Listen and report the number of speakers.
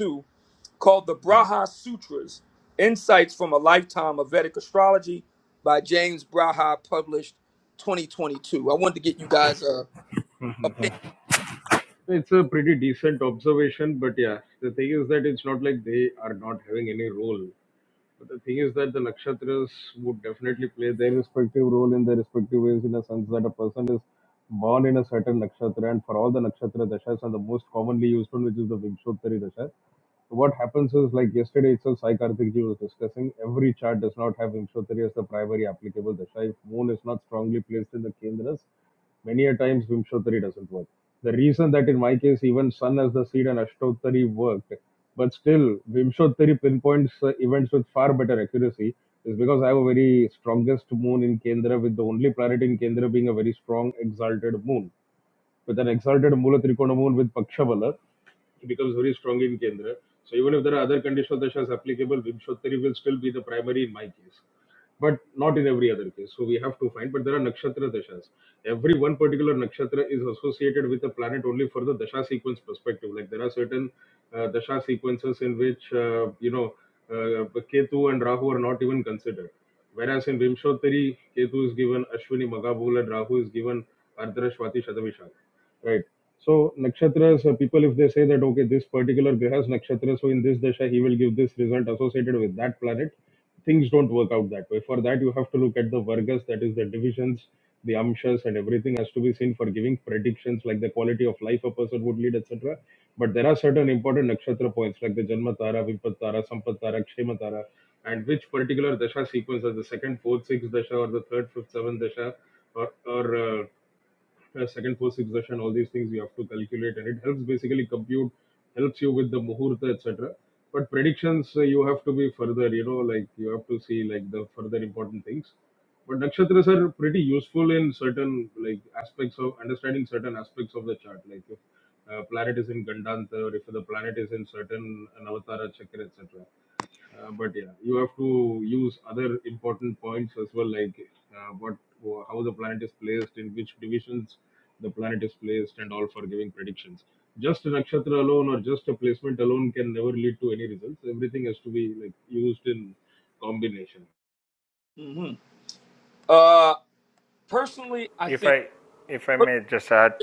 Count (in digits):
3